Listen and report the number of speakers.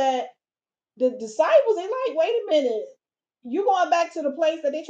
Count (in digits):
1